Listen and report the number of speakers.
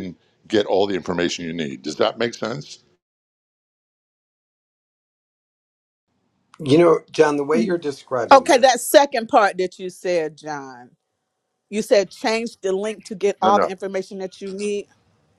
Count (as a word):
three